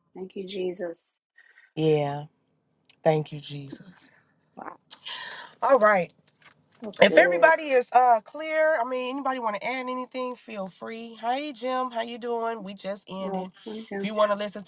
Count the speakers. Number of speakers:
2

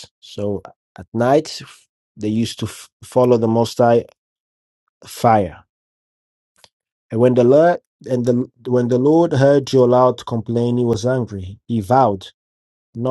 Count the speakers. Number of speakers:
1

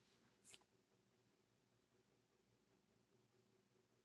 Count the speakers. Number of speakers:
0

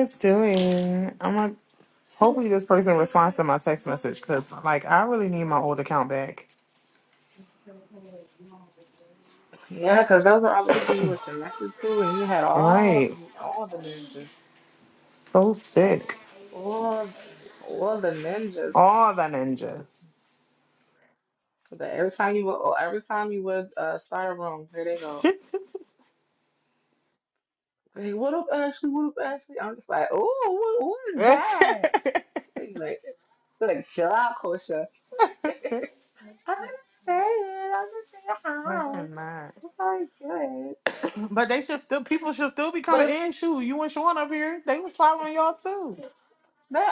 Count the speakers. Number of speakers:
2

